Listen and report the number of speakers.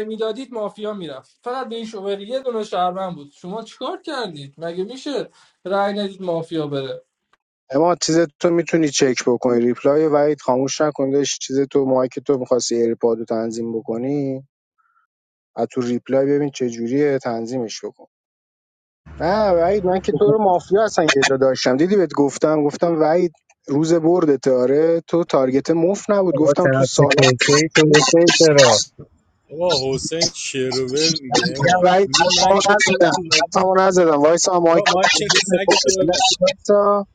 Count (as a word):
four